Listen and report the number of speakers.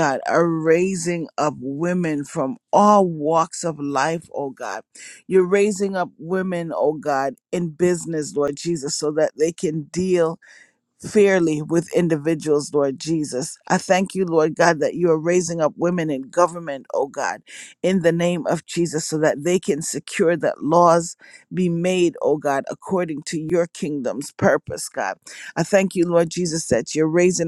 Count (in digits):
1